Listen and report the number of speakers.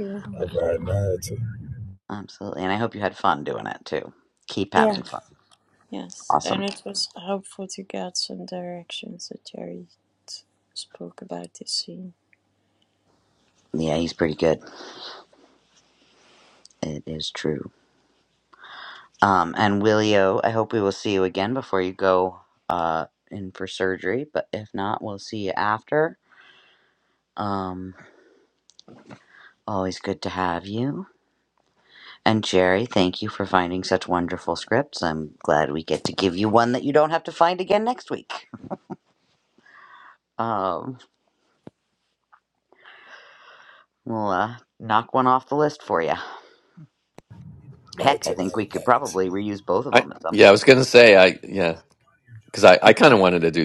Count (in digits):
4